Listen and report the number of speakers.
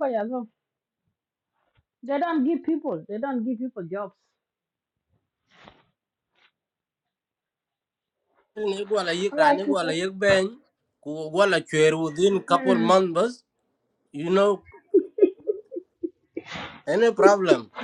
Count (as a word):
two